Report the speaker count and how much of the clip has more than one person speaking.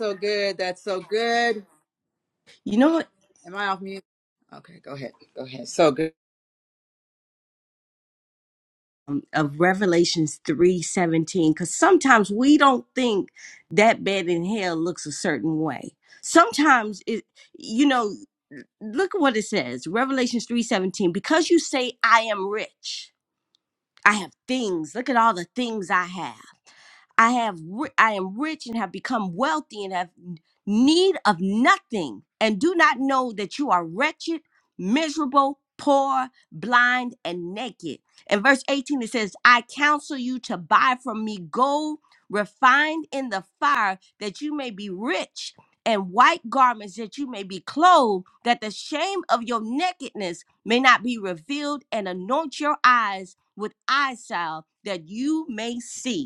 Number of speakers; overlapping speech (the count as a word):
two, no overlap